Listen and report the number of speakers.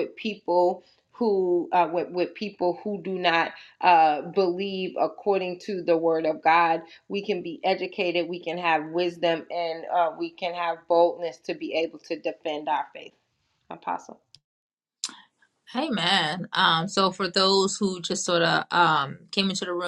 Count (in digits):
2